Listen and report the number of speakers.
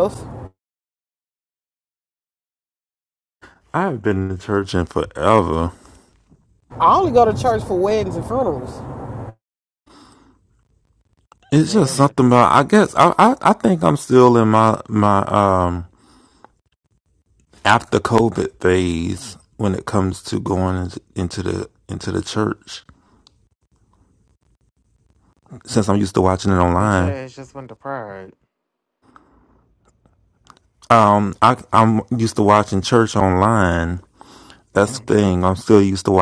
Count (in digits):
3